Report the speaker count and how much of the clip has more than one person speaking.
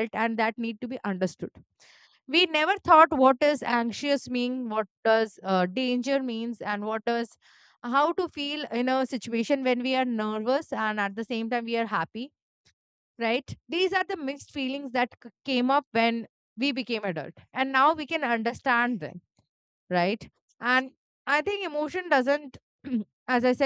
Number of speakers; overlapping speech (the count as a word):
one, no overlap